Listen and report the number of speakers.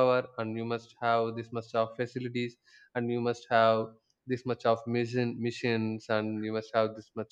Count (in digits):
1